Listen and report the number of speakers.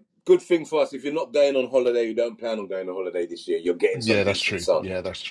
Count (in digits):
2